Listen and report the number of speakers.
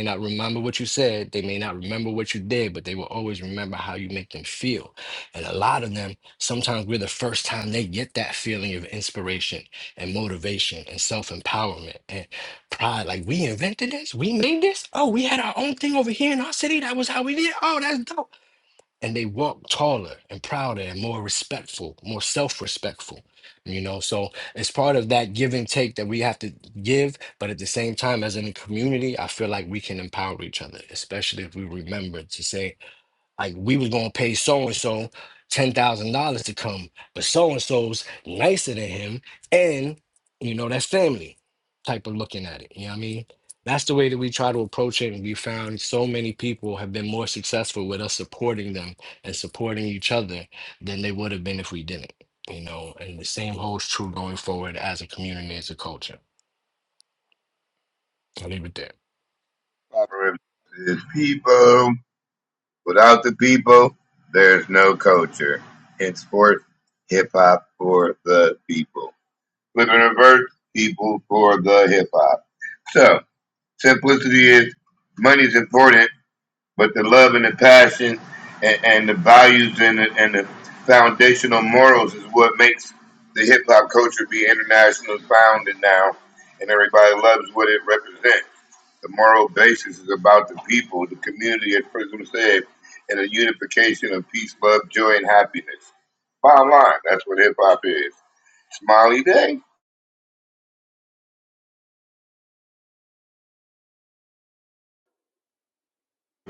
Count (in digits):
2